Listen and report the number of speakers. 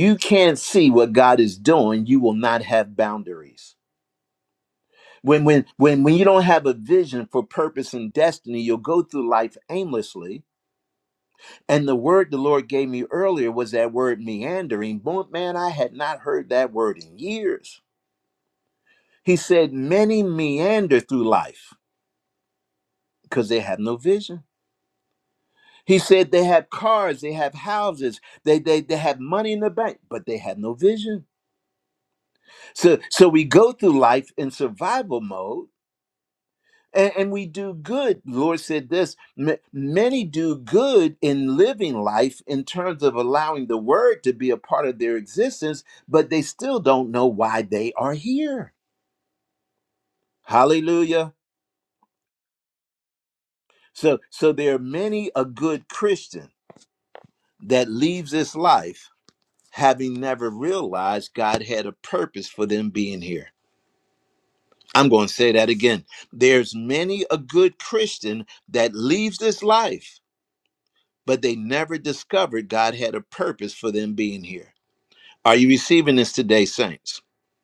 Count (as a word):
one